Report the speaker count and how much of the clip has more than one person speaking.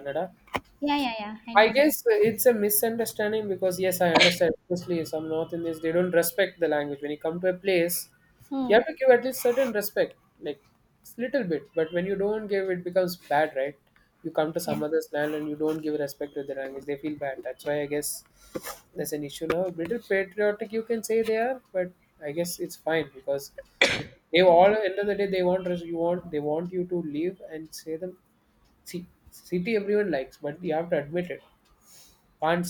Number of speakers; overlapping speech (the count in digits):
2, about 3%